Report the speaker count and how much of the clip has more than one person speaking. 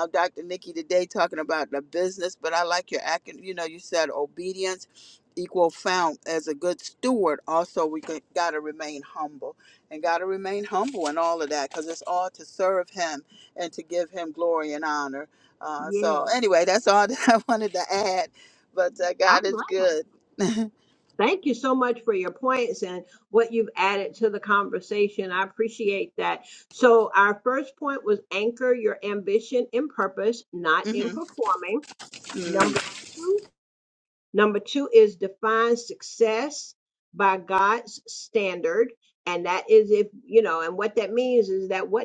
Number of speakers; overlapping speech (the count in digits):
2, about 3%